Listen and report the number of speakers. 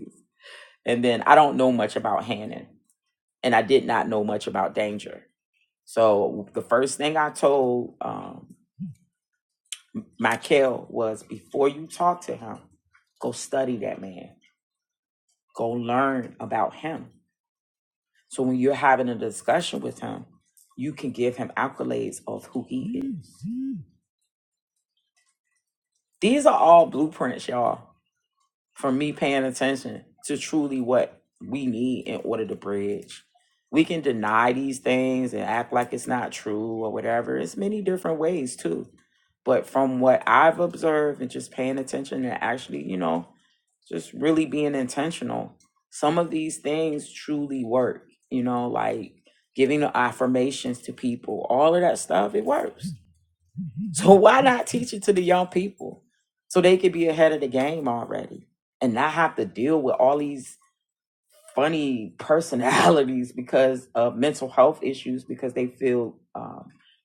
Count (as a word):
one